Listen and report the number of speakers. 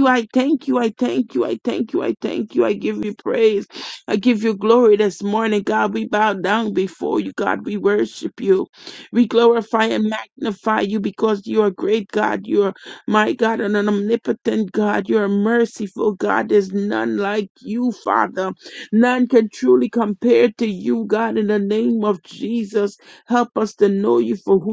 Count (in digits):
1